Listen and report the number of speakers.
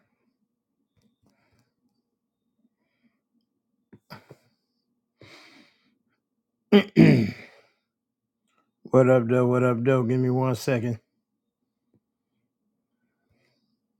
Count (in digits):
1